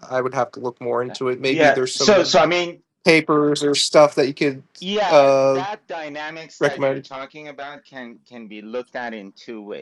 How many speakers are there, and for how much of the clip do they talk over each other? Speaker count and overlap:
two, about 18%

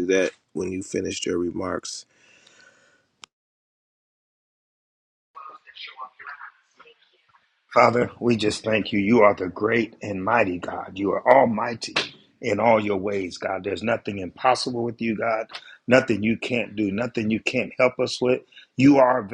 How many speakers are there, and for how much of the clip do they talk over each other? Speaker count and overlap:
two, no overlap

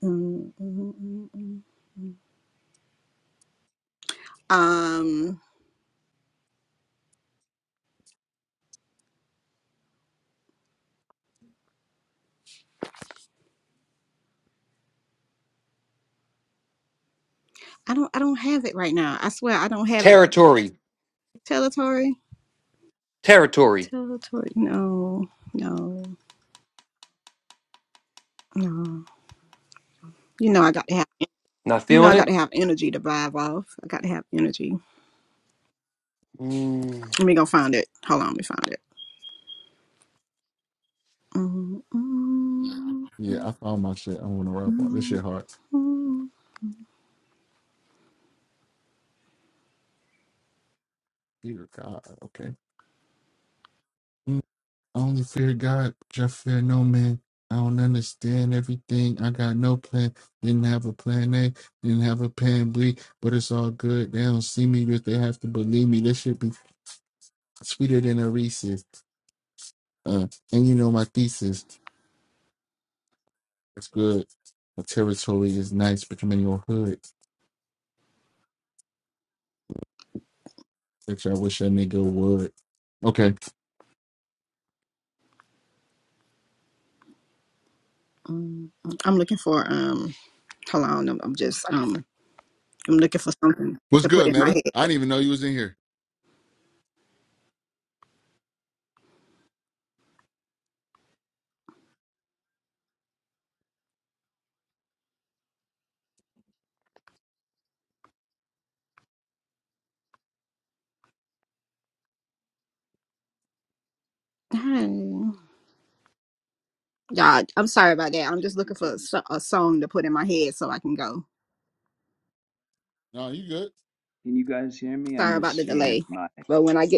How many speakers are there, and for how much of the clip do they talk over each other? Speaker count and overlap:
four, about 3%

